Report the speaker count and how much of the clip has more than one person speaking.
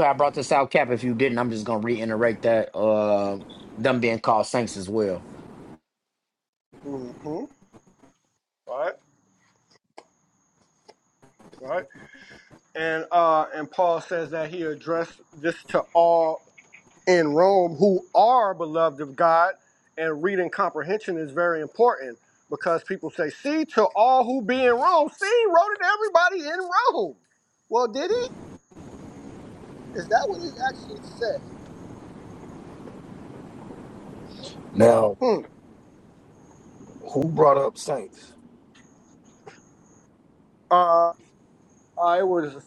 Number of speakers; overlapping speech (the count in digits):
3, no overlap